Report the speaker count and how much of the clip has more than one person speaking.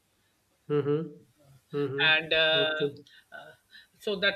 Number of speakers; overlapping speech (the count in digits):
2, about 6%